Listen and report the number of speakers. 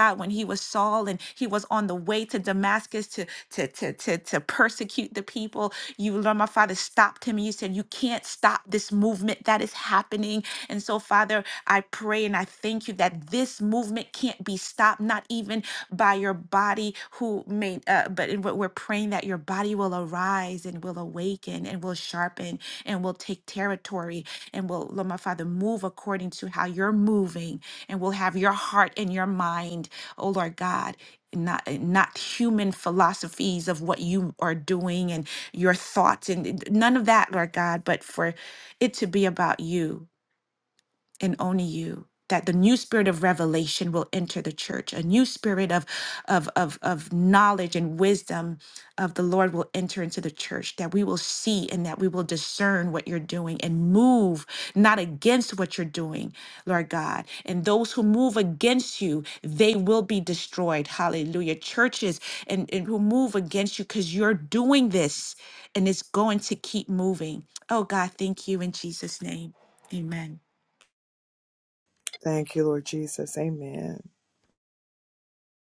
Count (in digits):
2